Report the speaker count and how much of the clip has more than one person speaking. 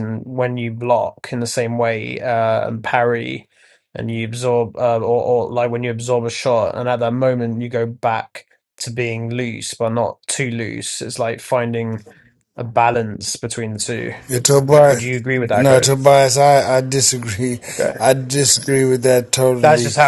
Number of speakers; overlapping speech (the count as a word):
two, about 5%